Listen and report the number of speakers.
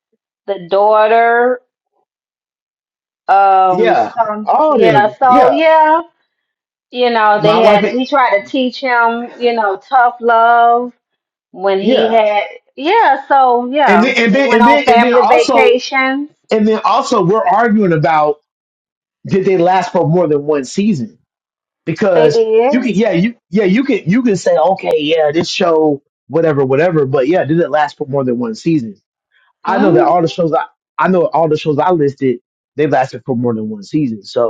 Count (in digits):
2